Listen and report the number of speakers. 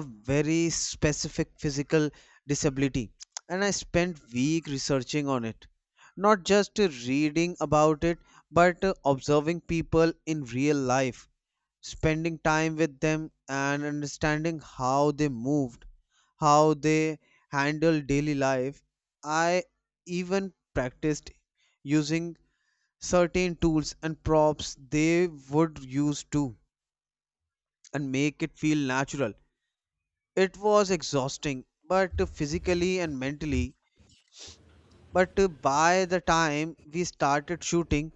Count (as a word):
one